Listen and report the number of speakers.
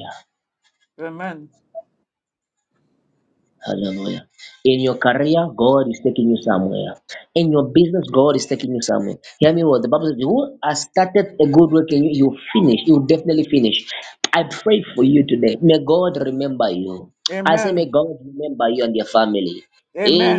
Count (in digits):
2